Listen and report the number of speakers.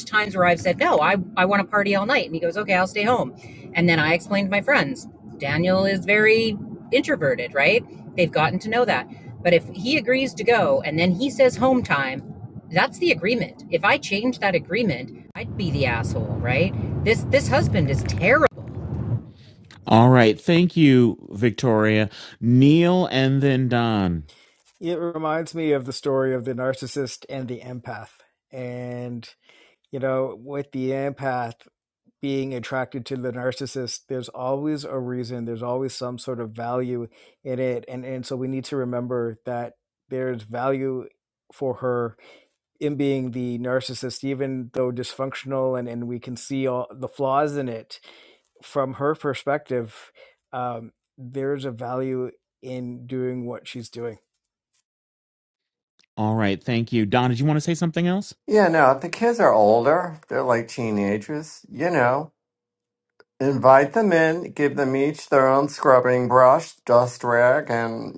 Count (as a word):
four